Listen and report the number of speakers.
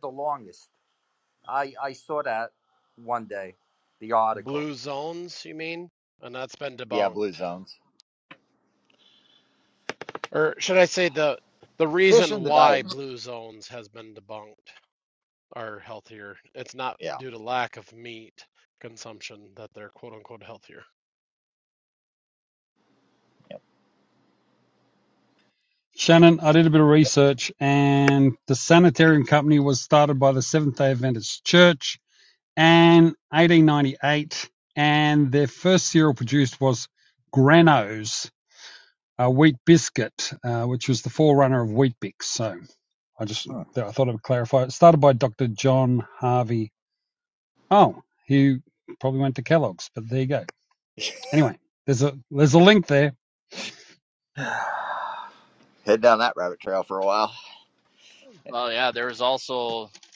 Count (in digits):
5